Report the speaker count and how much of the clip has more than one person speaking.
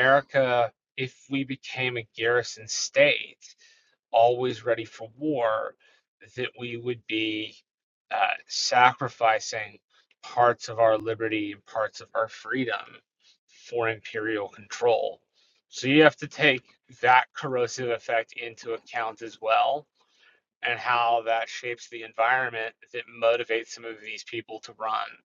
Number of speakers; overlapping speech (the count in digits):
1, no overlap